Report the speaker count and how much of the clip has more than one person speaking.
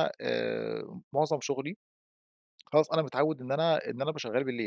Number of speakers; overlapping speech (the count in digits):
1, no overlap